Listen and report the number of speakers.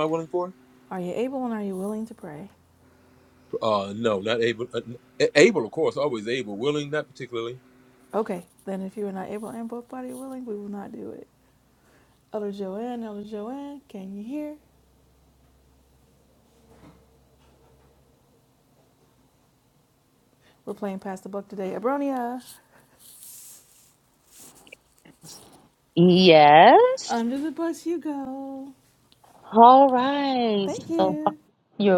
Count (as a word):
three